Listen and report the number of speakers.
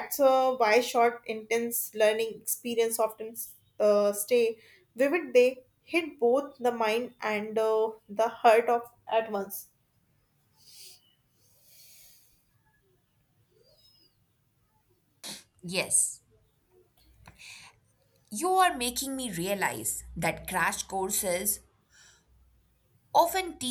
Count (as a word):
two